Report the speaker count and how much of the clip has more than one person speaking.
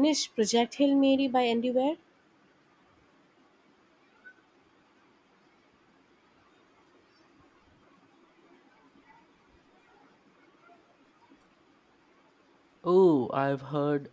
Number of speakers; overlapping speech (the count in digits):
2, no overlap